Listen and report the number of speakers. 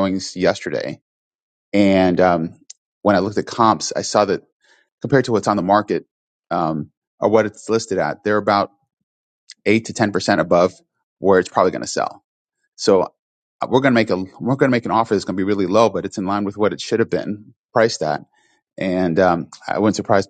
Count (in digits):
1